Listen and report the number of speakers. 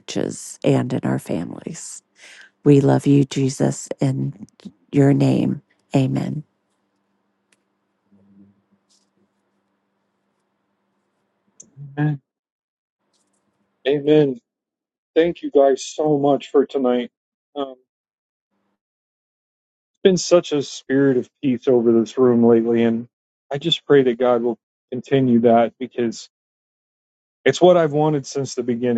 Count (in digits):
2